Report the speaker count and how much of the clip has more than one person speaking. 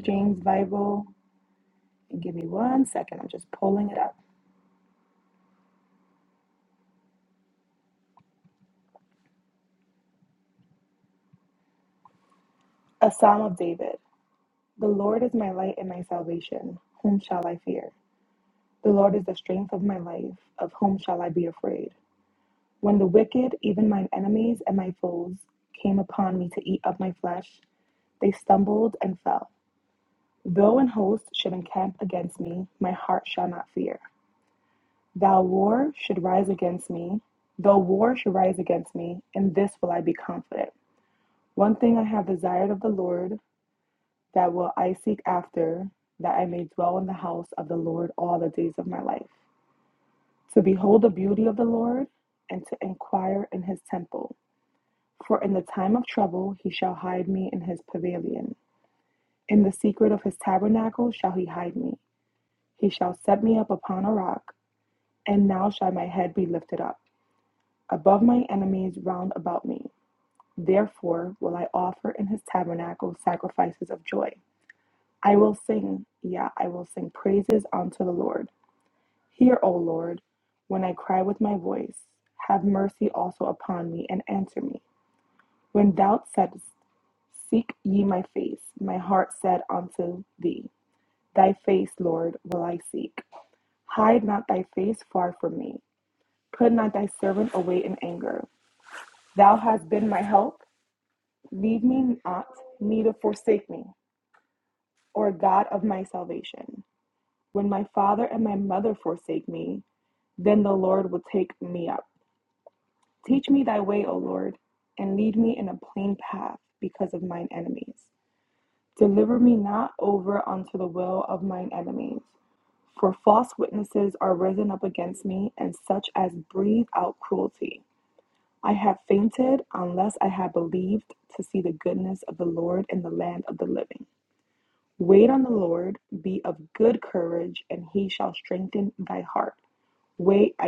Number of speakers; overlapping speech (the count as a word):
one, no overlap